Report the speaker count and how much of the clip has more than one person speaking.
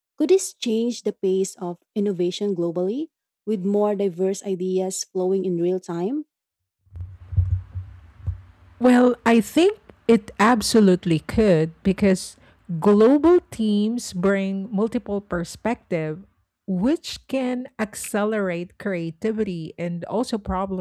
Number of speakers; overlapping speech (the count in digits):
2, no overlap